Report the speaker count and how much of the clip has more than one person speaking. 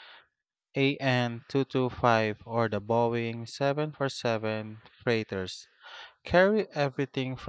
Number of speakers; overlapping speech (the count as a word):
one, no overlap